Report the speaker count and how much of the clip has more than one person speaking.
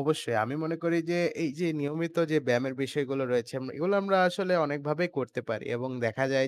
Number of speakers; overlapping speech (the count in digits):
1, no overlap